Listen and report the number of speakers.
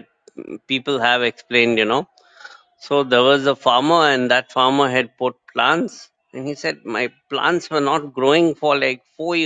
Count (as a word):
one